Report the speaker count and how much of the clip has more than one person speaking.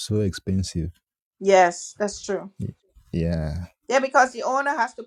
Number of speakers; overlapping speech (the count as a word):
two, no overlap